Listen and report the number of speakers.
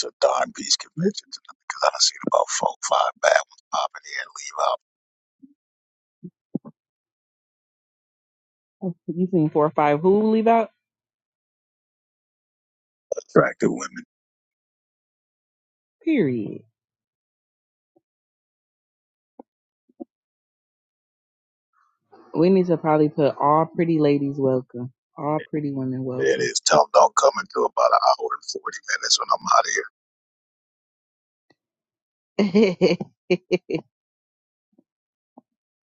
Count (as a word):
two